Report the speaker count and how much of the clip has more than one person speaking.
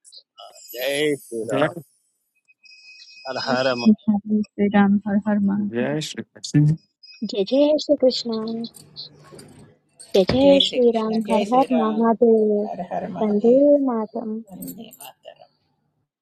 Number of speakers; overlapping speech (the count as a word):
five, about 19%